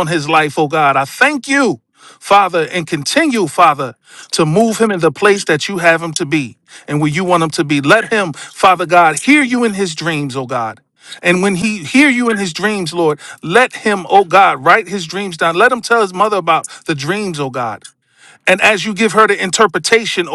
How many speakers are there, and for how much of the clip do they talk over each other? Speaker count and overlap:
1, no overlap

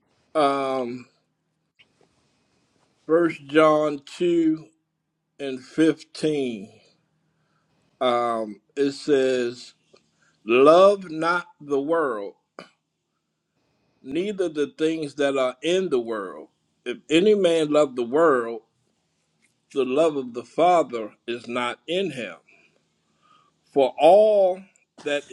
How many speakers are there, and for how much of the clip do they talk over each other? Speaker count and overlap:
1, no overlap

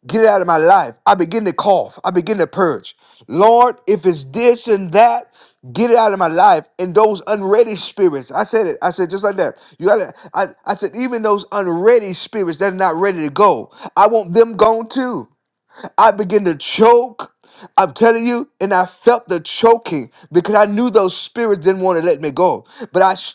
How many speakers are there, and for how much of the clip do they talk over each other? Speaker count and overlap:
1, no overlap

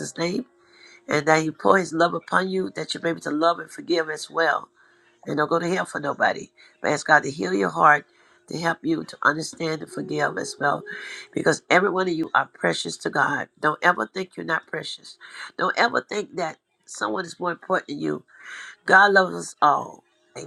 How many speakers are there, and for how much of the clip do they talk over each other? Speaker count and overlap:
1, no overlap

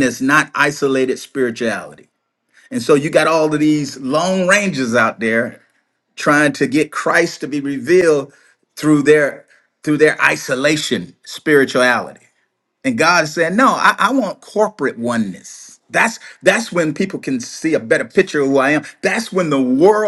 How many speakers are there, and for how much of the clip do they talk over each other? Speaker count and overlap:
1, no overlap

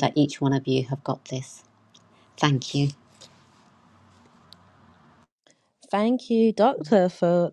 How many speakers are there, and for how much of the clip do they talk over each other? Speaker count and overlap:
2, no overlap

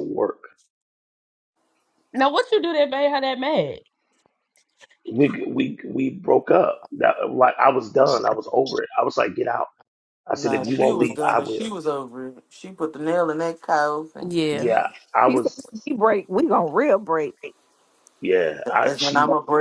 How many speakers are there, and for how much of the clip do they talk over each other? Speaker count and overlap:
4, about 12%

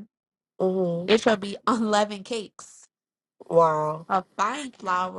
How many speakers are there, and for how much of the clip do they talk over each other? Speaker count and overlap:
2, under 1%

